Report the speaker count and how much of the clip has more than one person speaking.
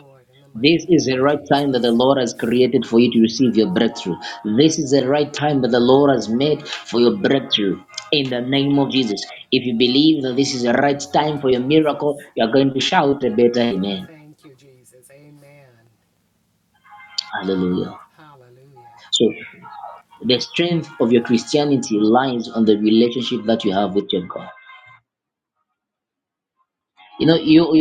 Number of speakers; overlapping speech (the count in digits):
2, about 9%